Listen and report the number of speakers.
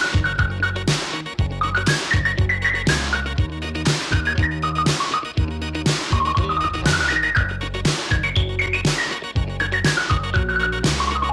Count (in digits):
0